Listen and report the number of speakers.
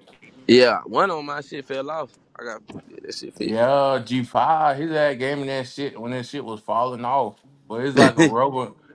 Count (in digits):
2